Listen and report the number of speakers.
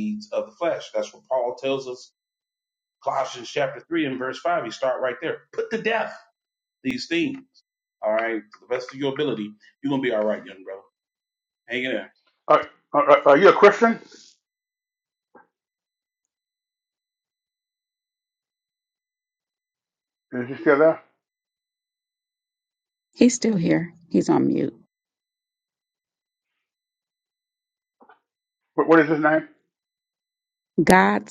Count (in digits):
3